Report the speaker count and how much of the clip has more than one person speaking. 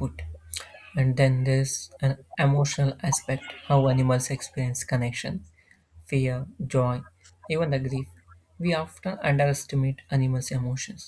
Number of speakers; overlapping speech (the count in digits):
1, no overlap